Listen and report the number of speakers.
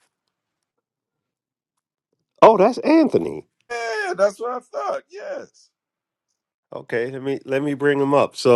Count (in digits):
2